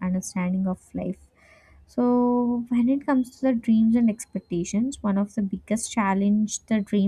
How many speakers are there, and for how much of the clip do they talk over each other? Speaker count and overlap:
1, no overlap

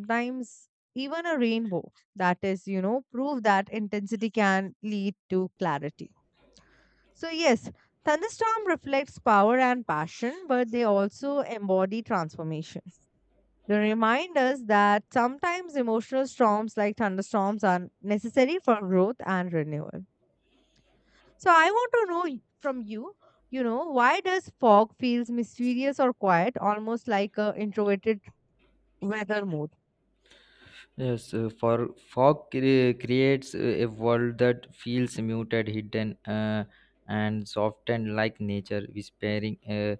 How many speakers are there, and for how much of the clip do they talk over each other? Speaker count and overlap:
2, no overlap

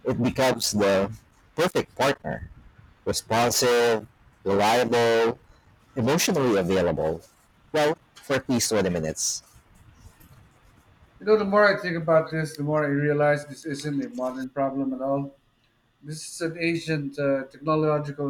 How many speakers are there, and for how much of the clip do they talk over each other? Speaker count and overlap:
2, no overlap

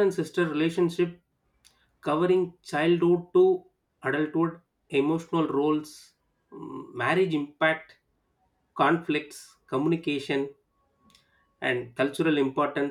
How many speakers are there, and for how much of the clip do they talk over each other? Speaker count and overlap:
1, no overlap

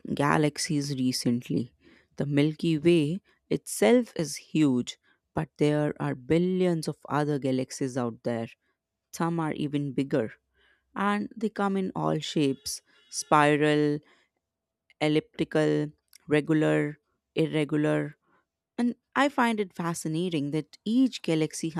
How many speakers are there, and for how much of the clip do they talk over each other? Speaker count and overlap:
1, no overlap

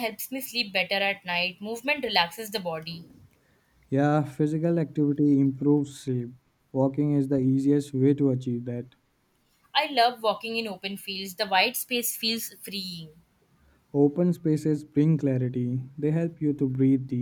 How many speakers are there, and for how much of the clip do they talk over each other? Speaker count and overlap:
2, no overlap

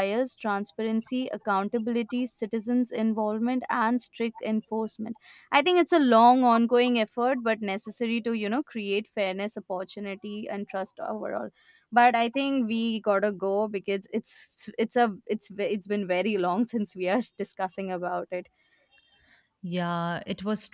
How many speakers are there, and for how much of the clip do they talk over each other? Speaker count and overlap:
2, no overlap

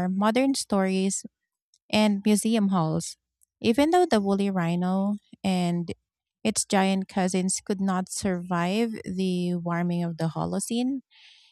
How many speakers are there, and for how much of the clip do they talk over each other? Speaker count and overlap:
1, no overlap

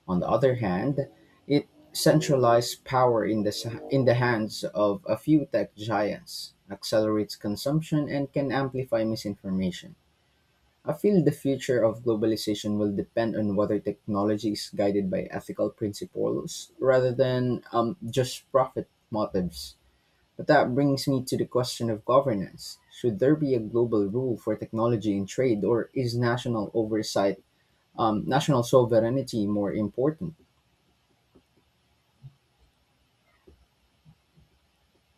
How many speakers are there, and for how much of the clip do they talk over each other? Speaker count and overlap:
1, no overlap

